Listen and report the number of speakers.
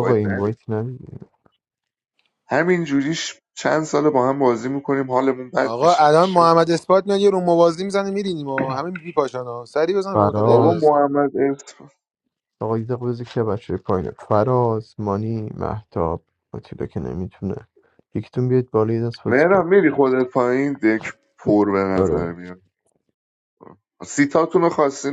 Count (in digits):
3